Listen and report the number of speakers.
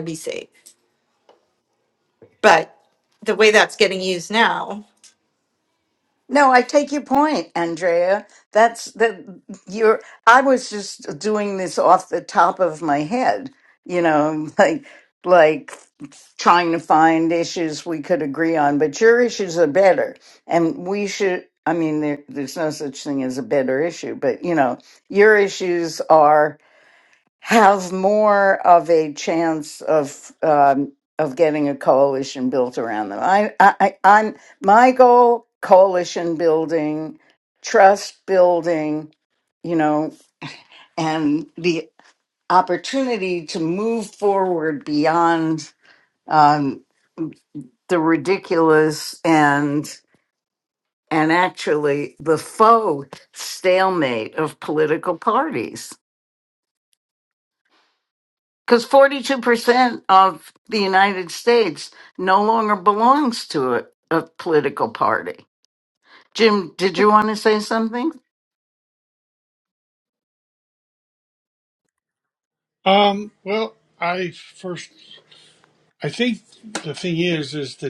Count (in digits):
3